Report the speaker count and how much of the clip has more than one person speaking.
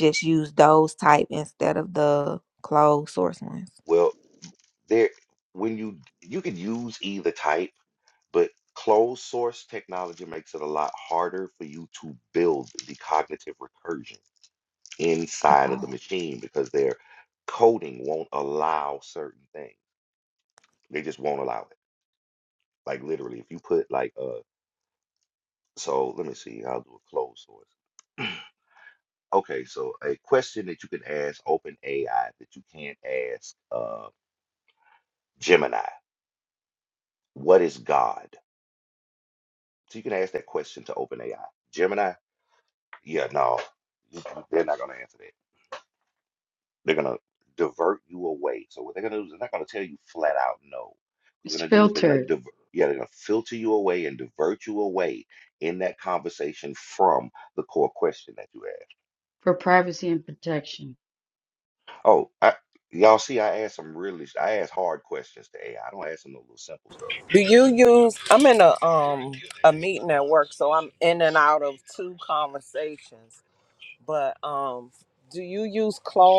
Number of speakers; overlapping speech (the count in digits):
4, about 2%